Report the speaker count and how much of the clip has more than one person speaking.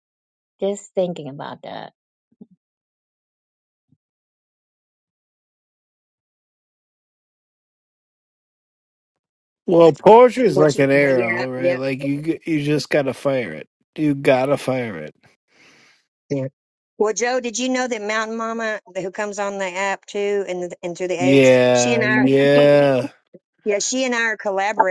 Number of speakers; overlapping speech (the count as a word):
three, about 10%